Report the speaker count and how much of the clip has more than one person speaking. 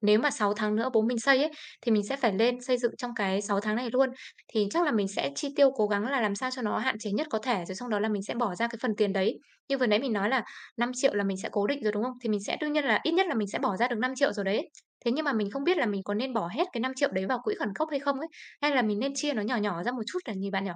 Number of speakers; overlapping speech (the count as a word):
one, no overlap